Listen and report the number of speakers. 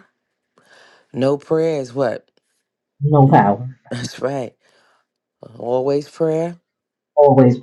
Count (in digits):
2